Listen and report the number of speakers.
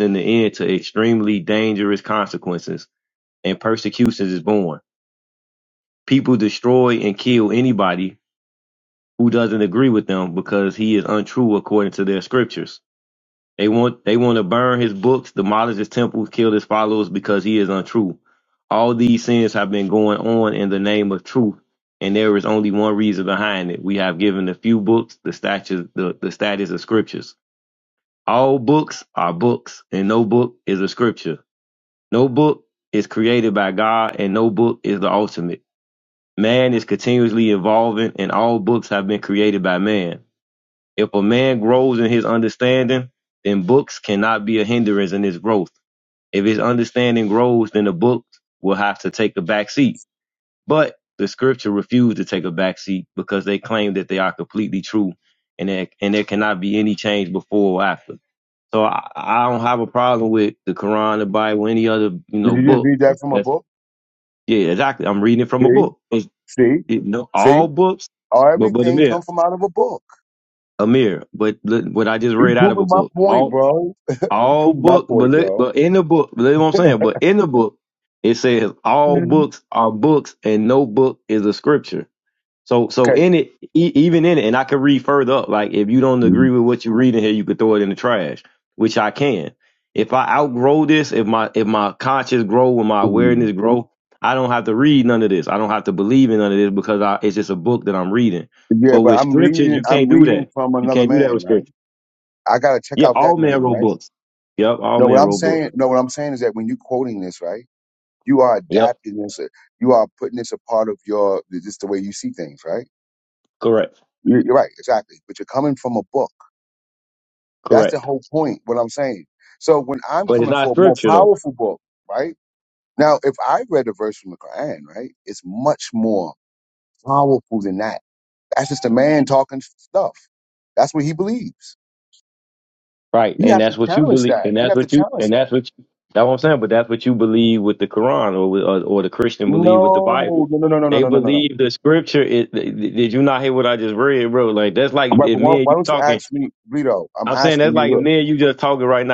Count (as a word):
two